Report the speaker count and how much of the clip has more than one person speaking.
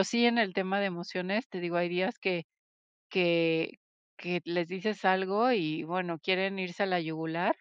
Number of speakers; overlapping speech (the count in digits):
1, no overlap